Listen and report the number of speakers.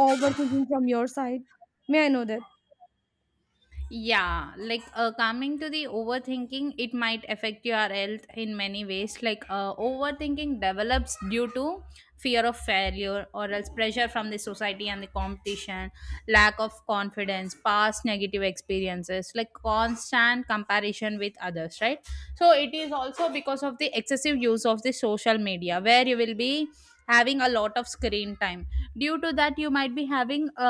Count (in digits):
2